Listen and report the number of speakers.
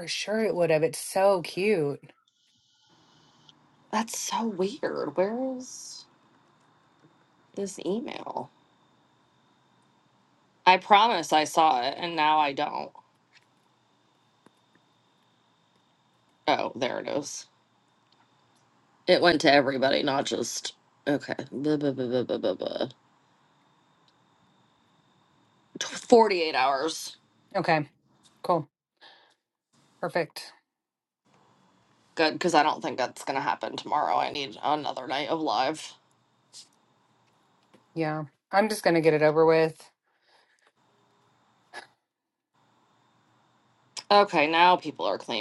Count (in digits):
2